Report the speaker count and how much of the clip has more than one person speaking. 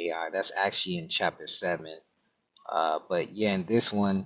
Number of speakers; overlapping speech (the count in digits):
1, no overlap